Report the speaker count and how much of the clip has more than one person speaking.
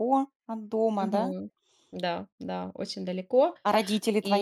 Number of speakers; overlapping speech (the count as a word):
two, about 12%